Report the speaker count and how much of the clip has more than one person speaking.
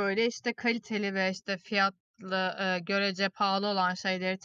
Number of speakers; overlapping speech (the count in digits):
1, no overlap